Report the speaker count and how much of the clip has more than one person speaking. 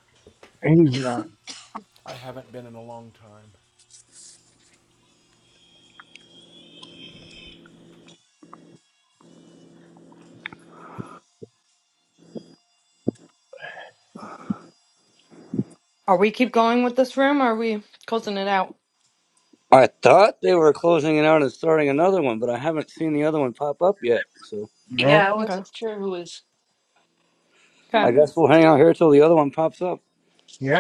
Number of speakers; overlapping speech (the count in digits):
5, about 3%